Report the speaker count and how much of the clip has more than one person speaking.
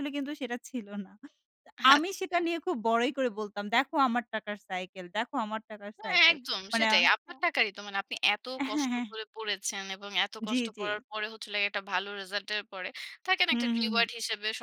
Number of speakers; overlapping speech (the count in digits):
2, about 14%